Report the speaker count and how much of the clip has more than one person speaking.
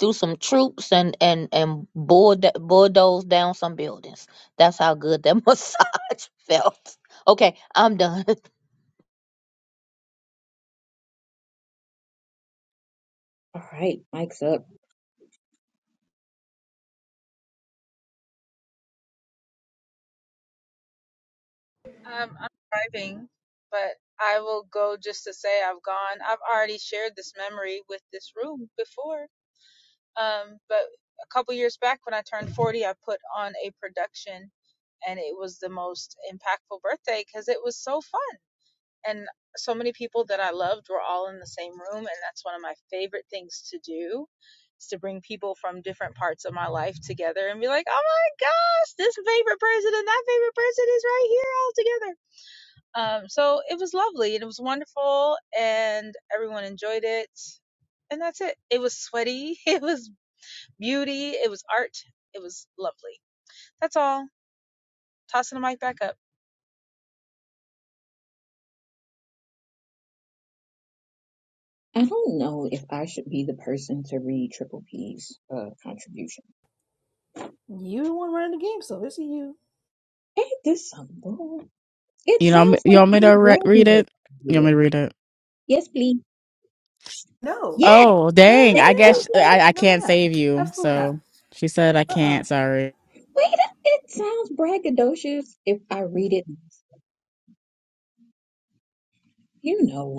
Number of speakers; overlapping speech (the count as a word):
five, about 5%